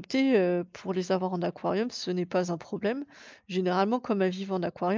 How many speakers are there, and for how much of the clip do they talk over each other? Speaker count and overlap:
1, no overlap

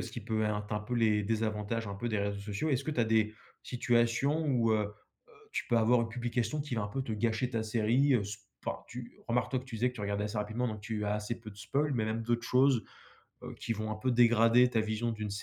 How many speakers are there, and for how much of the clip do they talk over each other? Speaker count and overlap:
1, no overlap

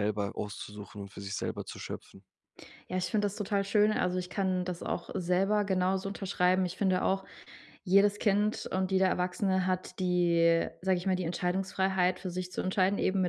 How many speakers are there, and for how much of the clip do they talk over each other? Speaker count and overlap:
2, no overlap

